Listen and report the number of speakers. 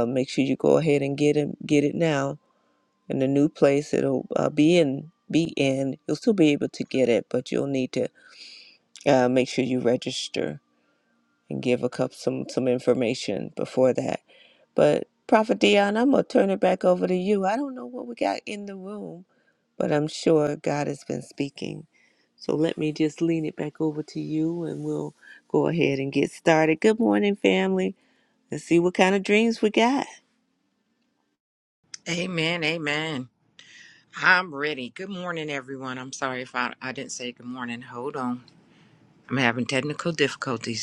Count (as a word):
two